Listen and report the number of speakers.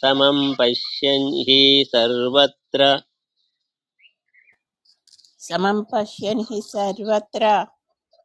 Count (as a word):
two